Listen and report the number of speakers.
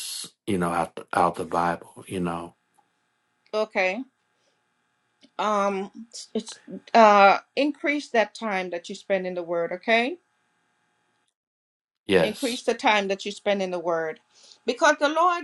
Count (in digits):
2